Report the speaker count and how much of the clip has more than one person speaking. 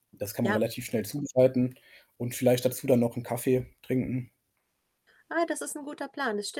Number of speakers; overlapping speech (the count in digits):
2, about 3%